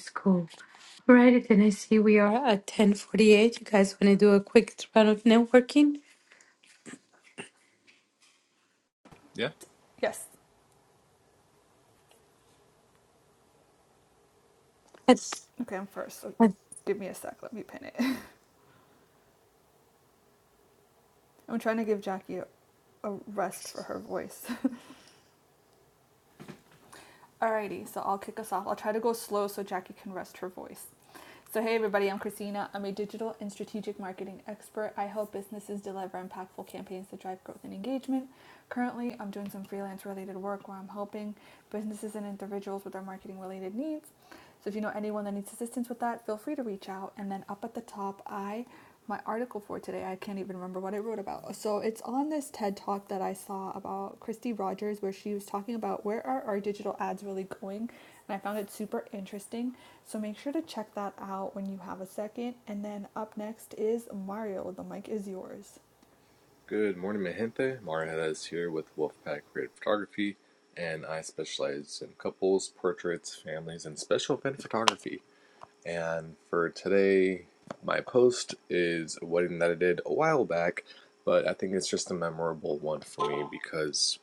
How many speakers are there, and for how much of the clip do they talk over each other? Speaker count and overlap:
three, no overlap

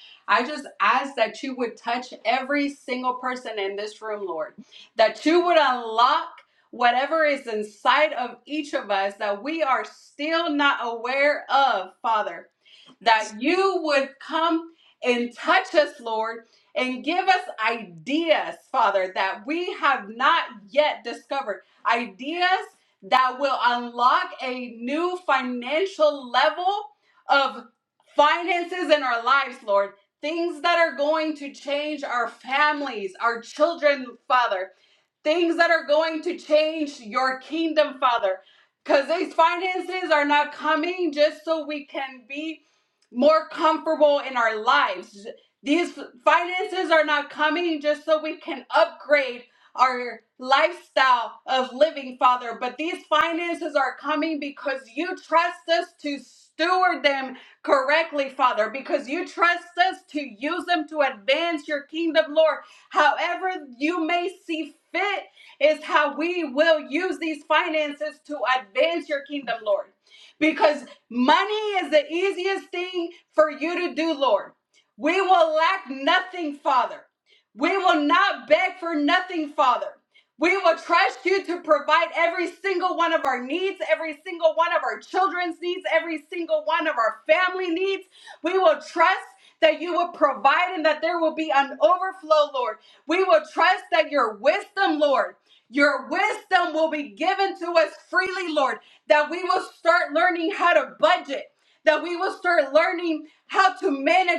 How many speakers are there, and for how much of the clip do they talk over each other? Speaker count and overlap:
one, no overlap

